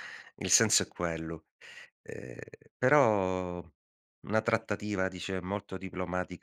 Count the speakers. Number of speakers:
one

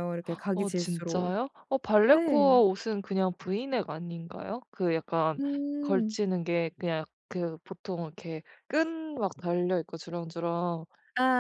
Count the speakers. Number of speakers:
two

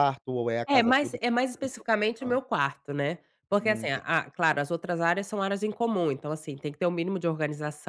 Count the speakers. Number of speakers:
two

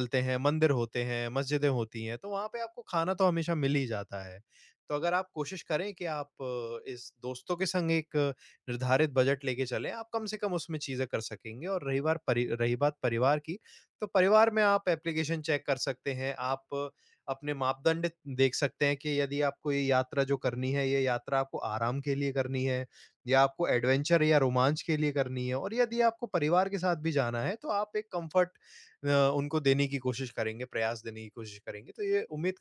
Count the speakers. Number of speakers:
one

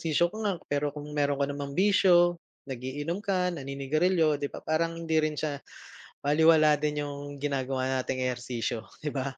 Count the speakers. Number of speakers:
one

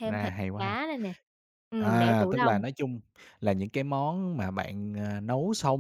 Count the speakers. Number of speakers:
two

